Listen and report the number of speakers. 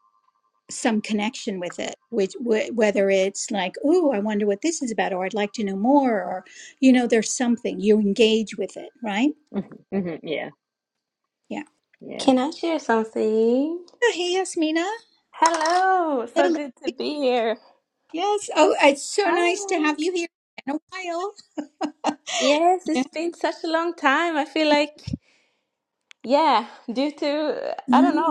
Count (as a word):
three